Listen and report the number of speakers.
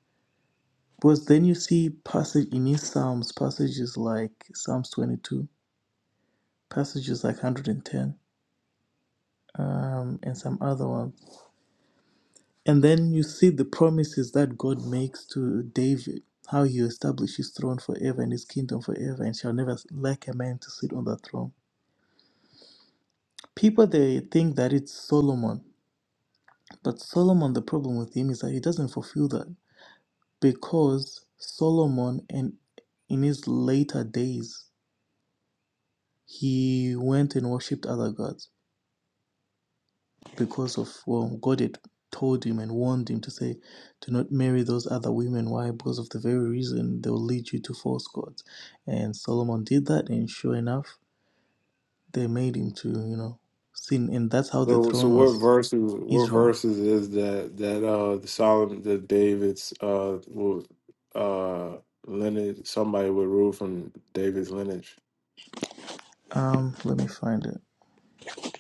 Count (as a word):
two